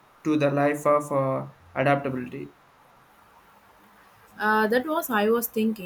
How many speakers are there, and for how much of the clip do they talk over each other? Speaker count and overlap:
2, no overlap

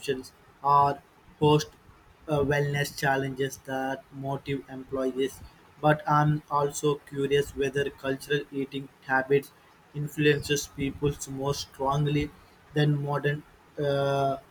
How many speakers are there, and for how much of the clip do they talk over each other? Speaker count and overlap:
1, no overlap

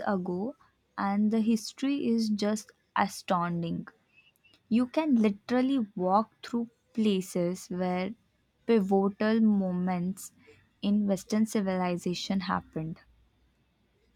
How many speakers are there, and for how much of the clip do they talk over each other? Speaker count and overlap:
1, no overlap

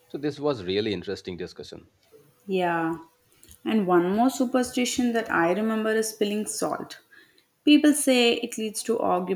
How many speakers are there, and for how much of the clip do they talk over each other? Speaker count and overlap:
2, no overlap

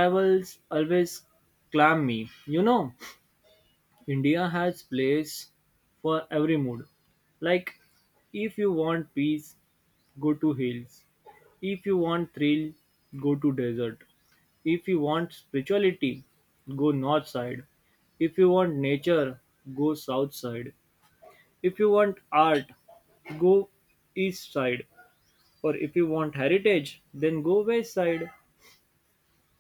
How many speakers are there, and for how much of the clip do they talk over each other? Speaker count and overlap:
1, no overlap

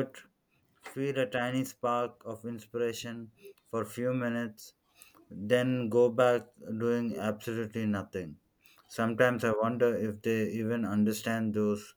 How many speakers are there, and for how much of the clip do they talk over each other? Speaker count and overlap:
1, no overlap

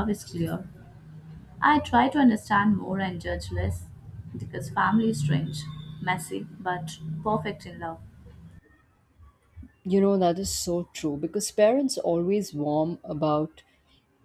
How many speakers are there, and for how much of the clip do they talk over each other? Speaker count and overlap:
2, no overlap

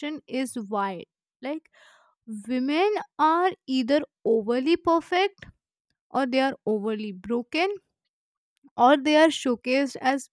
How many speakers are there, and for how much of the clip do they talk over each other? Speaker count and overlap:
1, no overlap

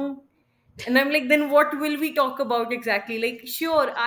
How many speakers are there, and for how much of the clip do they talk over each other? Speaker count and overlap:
1, no overlap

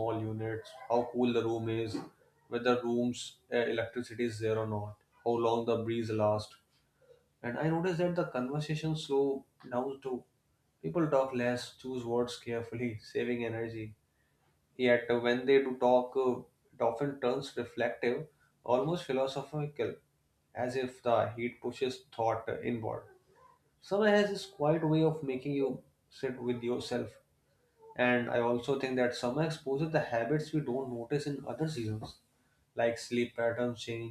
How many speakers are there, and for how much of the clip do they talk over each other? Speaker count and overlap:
1, no overlap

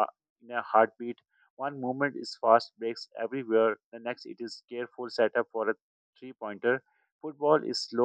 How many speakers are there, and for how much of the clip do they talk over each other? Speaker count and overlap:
1, no overlap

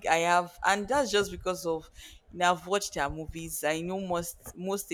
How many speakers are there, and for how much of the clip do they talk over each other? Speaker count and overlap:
1, no overlap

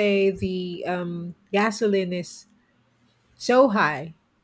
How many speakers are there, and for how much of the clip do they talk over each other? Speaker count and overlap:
1, no overlap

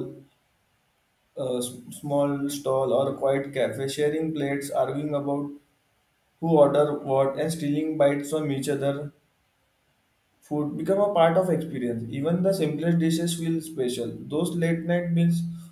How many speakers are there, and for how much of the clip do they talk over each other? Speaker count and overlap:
1, no overlap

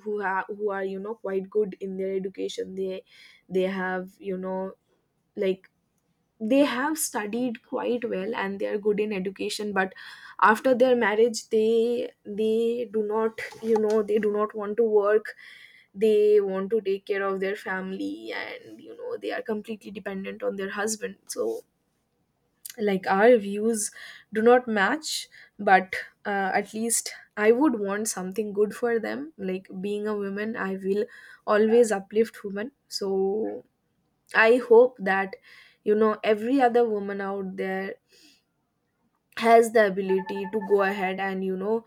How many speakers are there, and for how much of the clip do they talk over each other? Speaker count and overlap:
1, no overlap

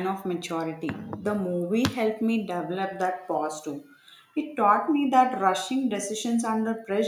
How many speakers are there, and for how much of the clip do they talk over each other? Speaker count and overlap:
1, no overlap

